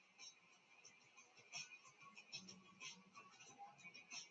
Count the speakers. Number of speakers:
zero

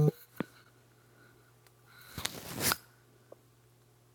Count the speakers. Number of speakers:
zero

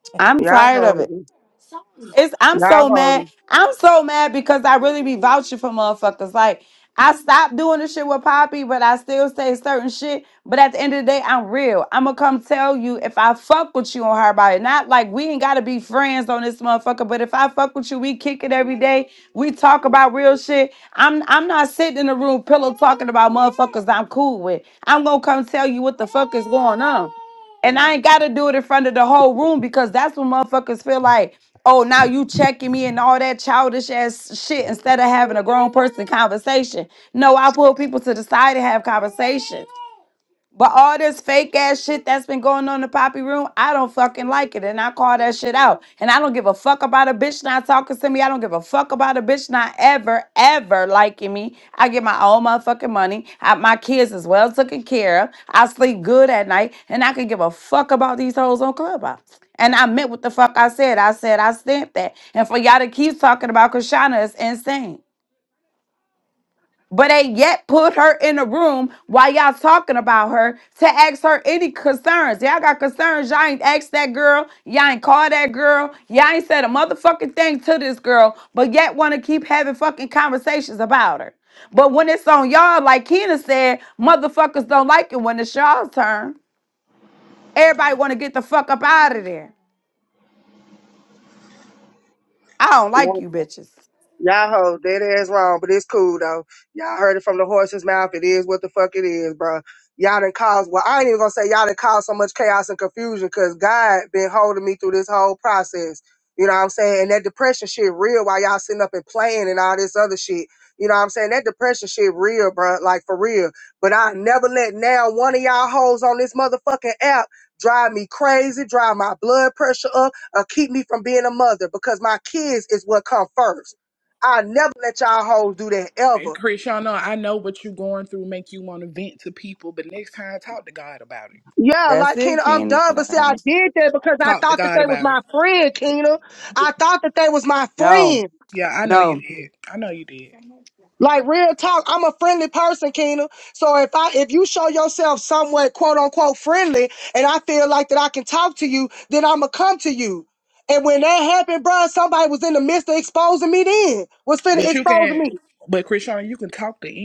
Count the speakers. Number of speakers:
three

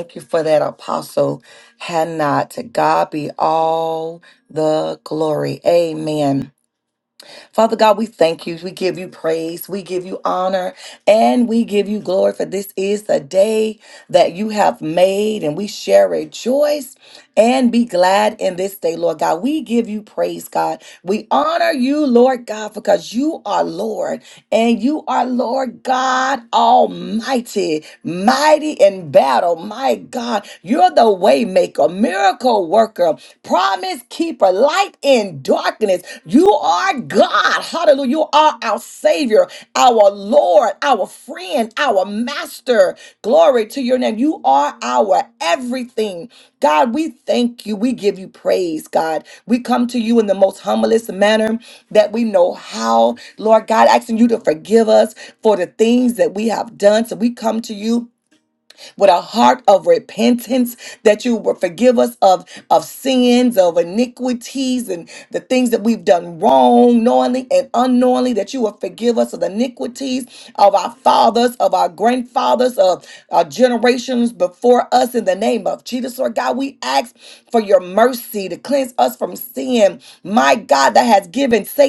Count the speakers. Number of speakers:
one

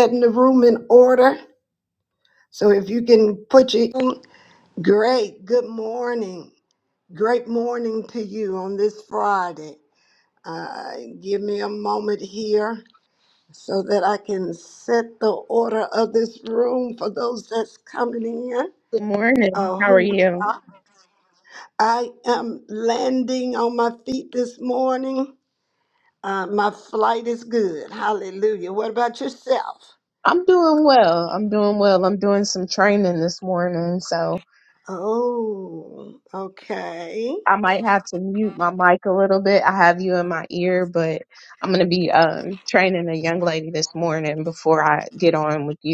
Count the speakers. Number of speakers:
two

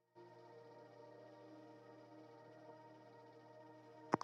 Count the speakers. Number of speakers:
zero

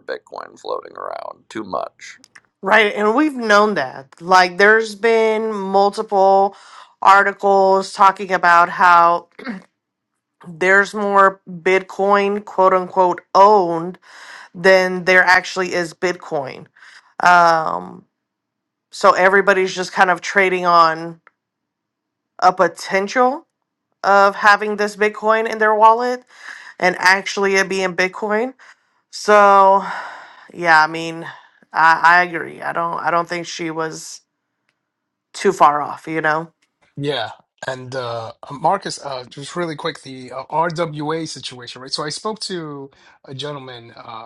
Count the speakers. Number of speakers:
three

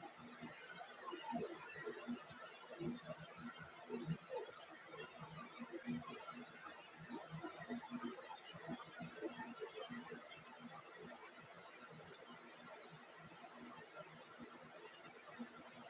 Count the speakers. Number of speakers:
zero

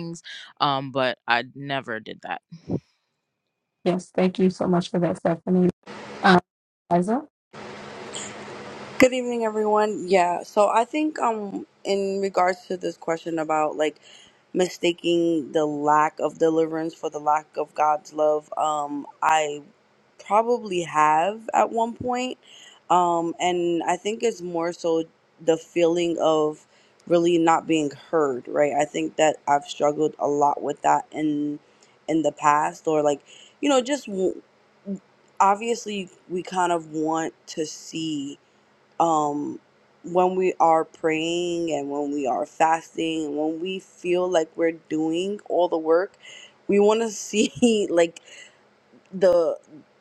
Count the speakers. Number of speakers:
three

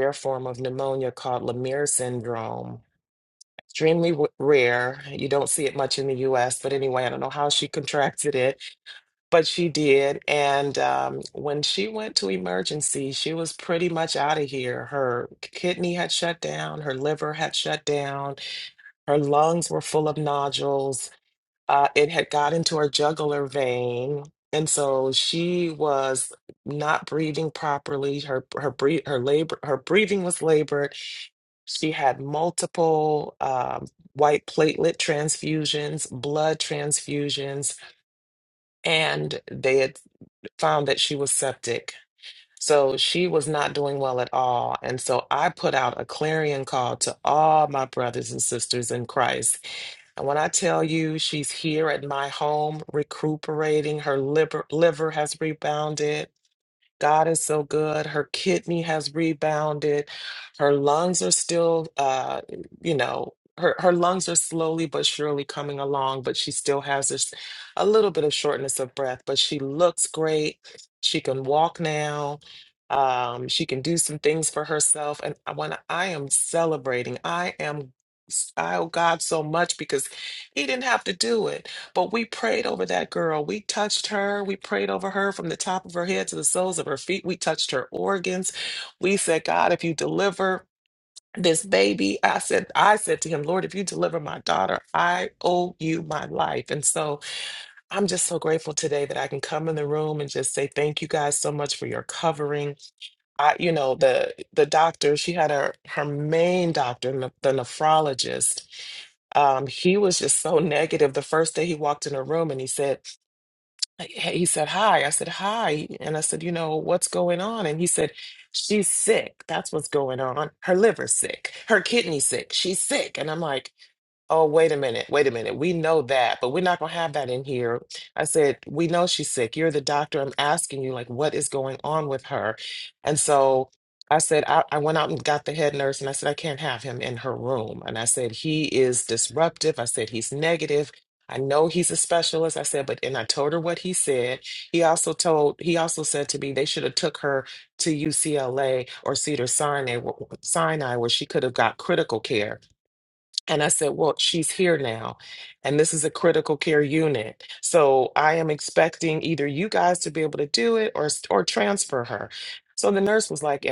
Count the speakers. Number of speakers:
one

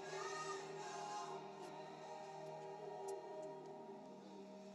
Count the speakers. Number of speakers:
zero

